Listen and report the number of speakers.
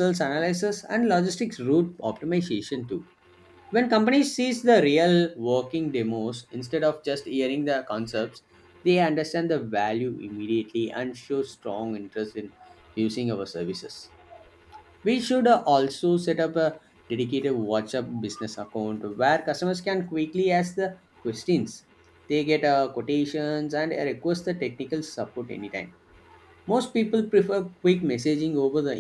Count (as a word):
one